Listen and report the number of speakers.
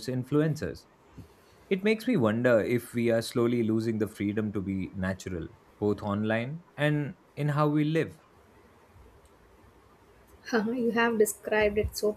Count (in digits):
2